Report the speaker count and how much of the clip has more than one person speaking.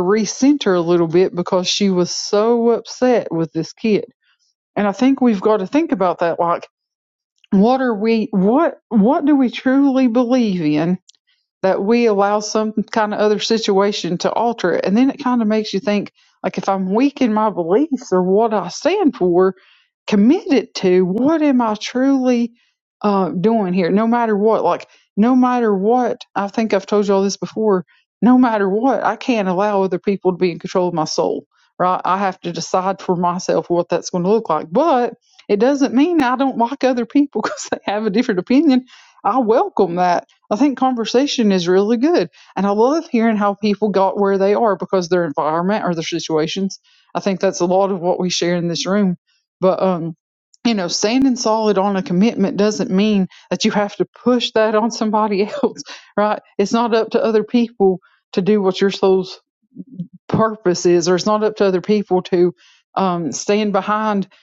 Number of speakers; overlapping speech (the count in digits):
1, no overlap